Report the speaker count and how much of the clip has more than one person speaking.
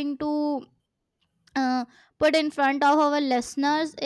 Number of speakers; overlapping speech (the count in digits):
1, no overlap